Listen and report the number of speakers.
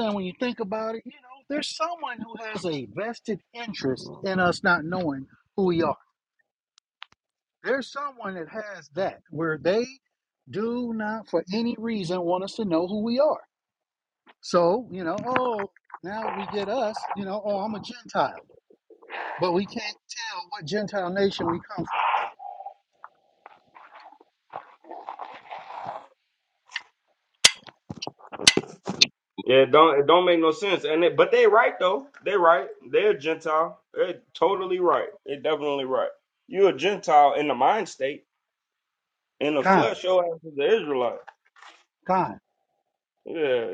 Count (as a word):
two